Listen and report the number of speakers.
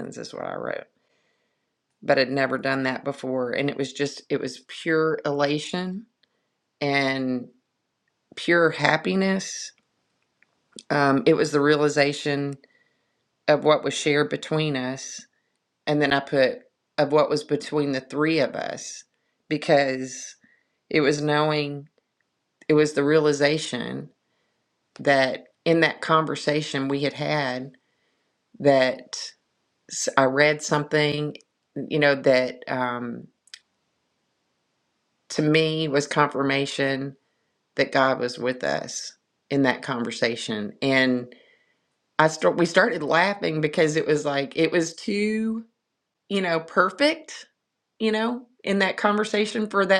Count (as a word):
one